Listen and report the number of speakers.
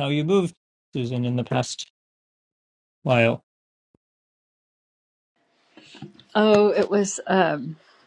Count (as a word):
two